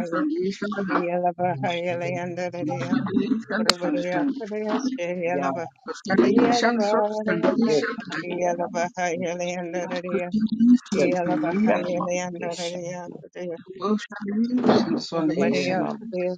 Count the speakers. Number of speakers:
3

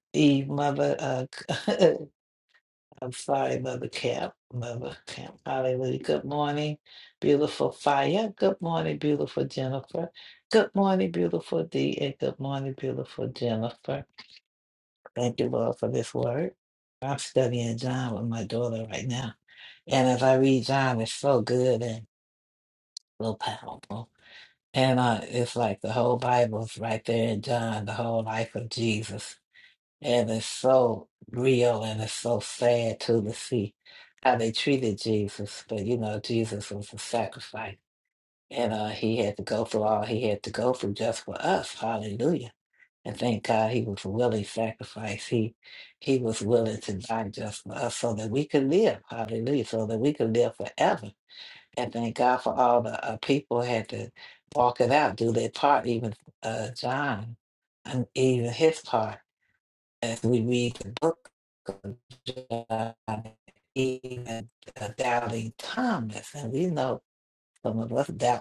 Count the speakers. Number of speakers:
1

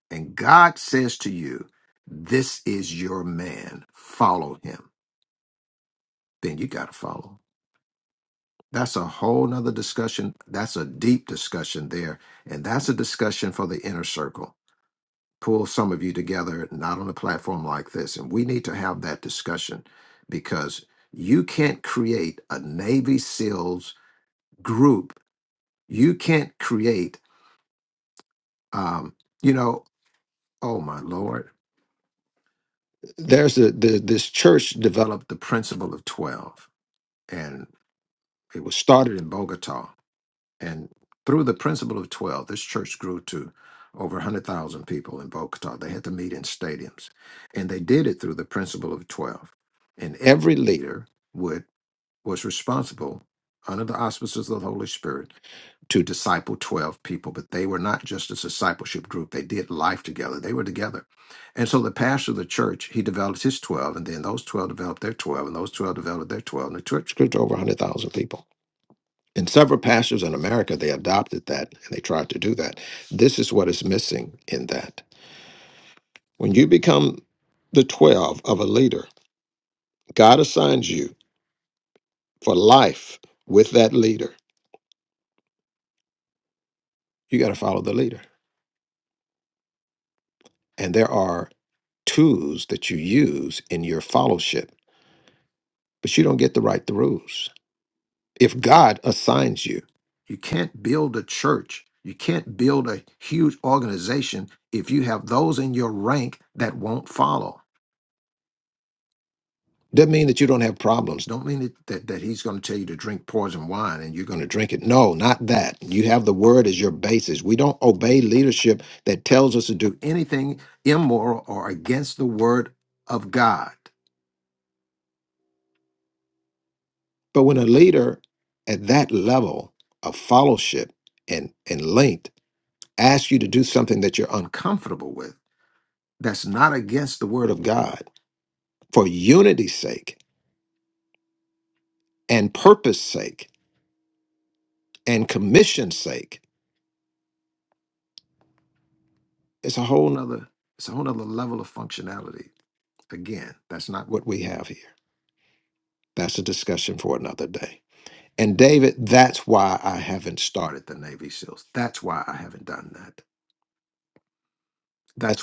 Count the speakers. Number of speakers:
1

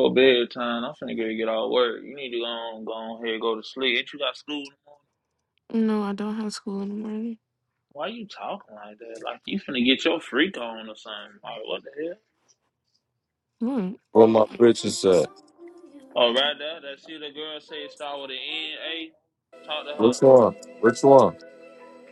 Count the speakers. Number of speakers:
3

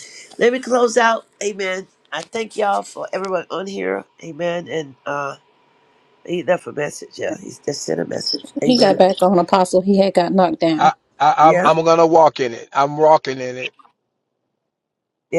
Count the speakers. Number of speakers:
3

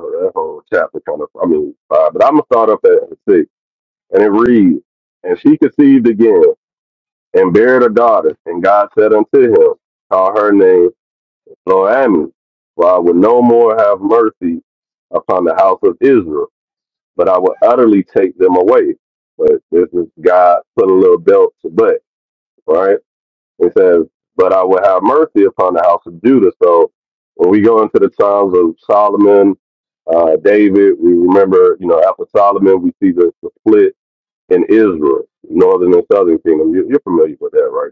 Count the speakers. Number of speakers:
1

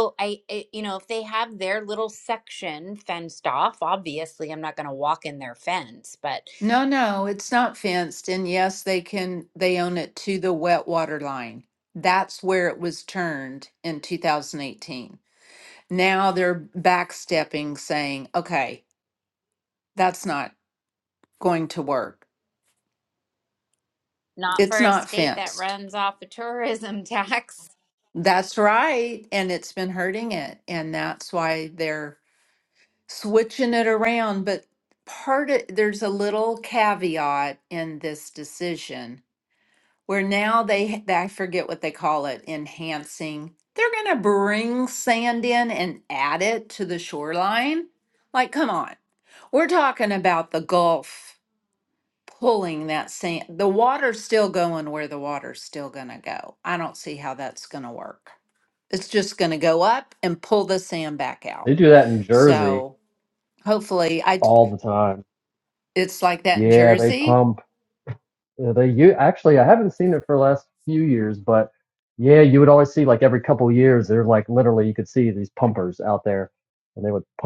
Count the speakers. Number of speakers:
3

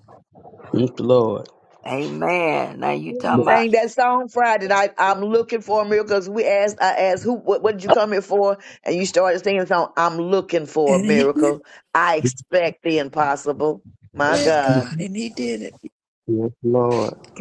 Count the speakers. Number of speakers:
4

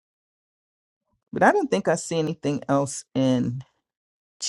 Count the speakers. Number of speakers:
1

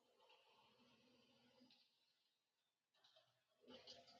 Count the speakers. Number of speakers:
0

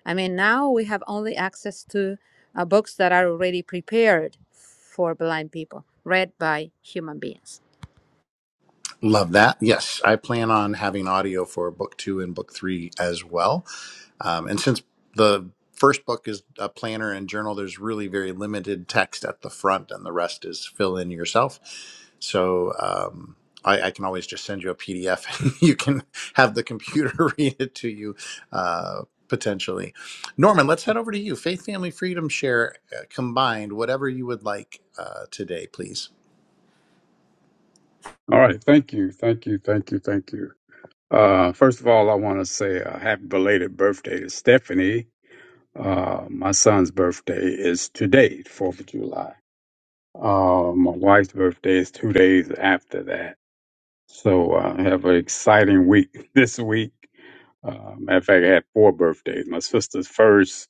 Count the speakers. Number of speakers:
3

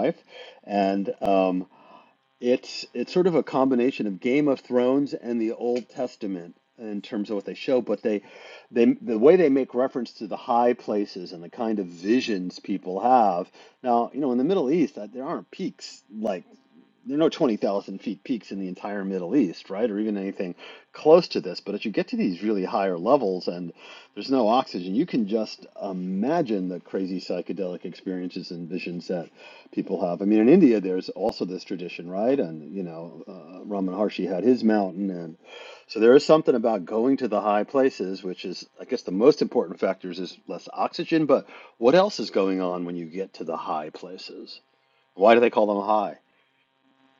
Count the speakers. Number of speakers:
1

